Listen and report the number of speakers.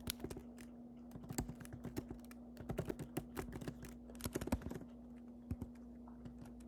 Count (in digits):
0